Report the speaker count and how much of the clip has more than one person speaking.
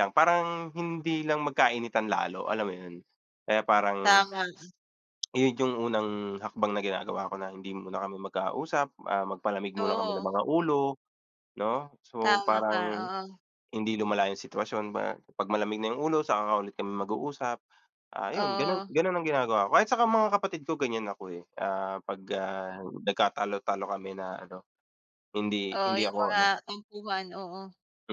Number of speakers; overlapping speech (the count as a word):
two, about 10%